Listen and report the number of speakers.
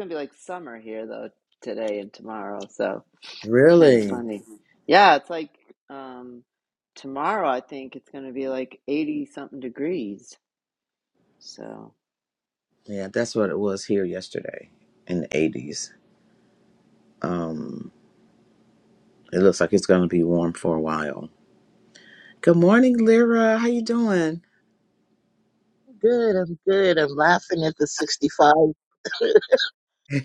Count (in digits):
3